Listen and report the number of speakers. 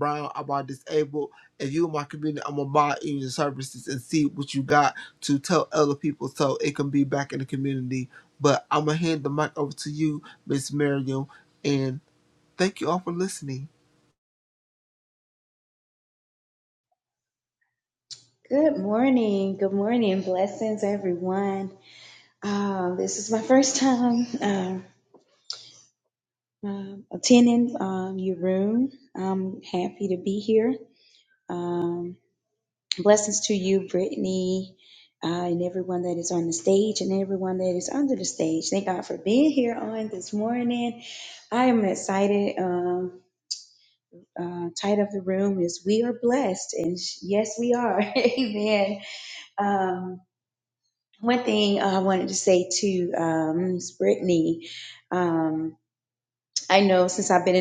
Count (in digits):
2